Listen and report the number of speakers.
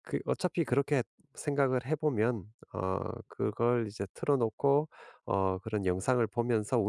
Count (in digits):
1